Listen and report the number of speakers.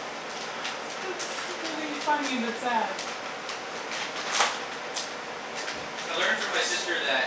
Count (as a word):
two